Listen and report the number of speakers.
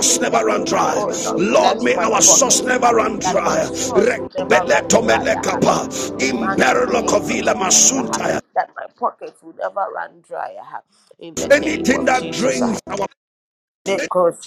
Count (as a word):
two